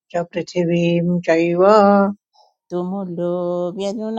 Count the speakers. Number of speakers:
2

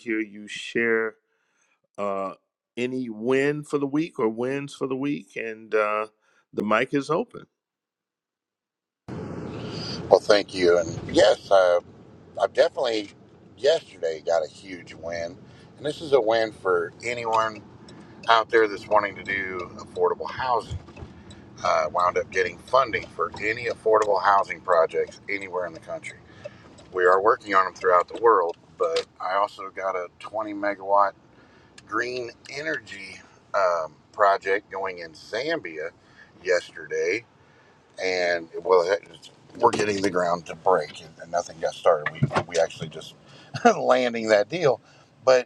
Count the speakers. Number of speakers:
2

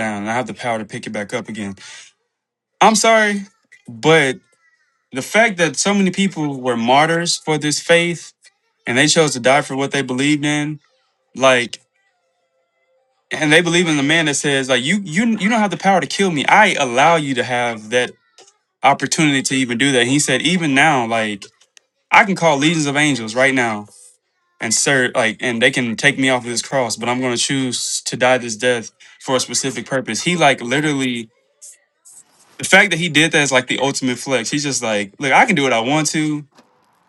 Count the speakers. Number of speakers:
1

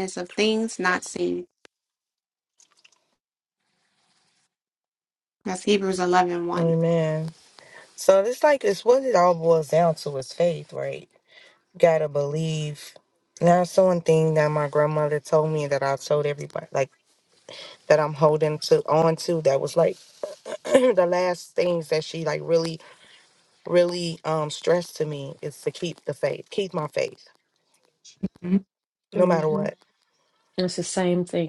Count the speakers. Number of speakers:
3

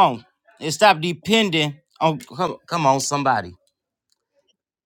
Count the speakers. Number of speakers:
1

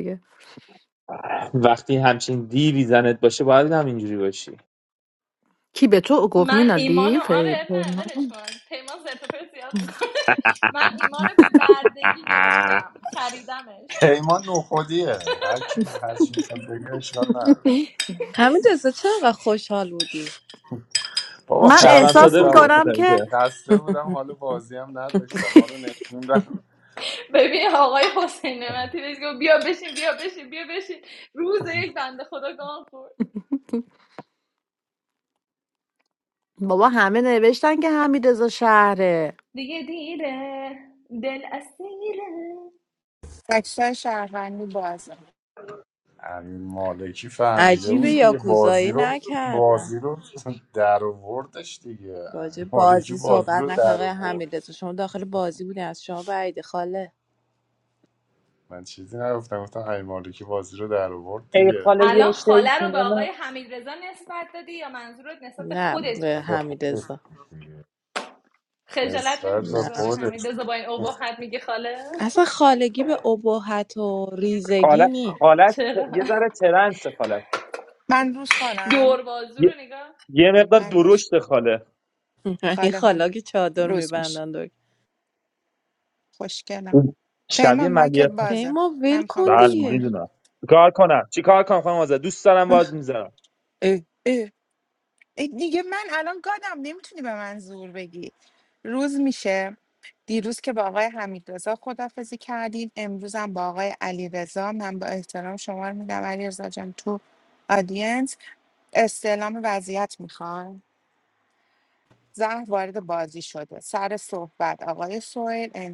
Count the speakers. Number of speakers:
6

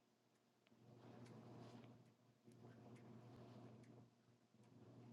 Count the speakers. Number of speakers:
0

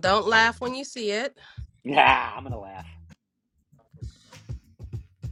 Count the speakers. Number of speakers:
2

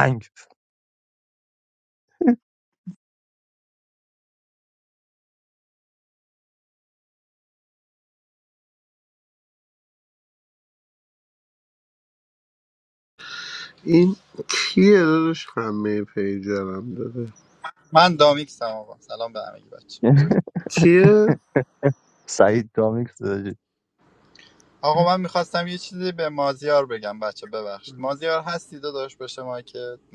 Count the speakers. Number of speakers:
3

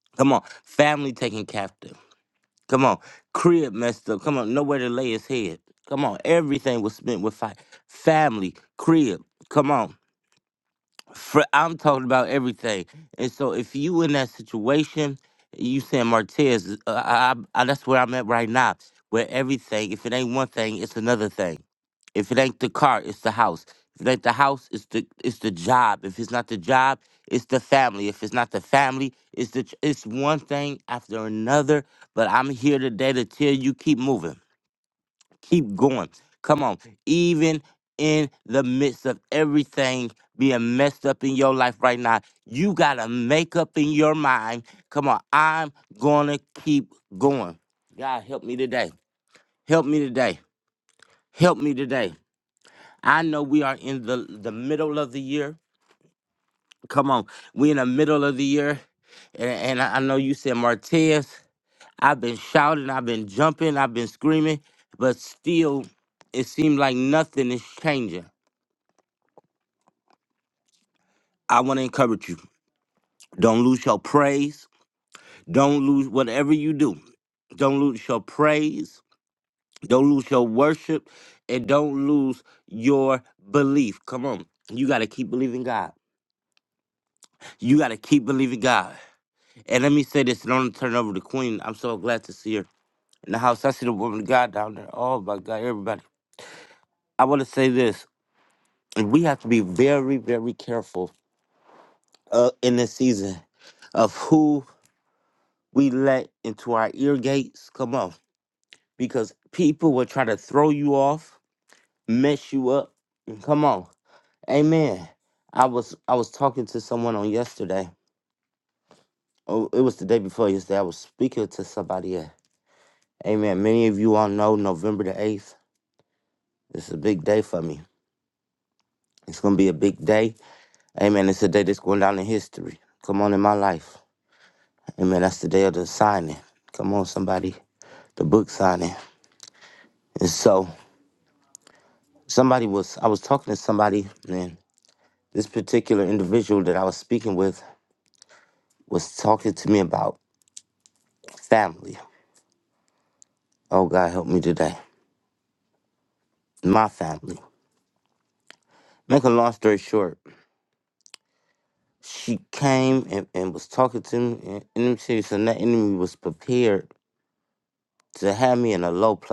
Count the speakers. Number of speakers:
1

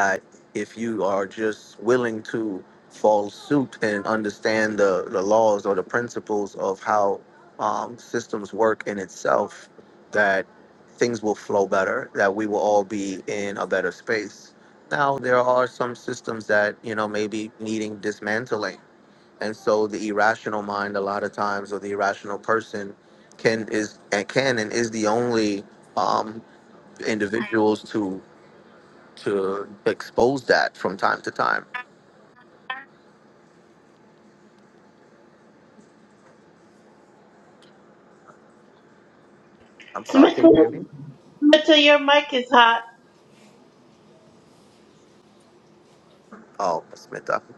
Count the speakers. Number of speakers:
2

